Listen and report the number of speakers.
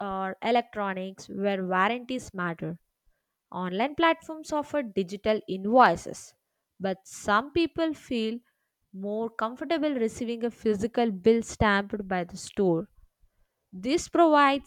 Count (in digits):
1